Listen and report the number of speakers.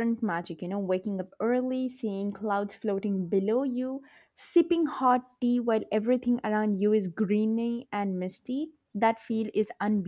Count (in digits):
1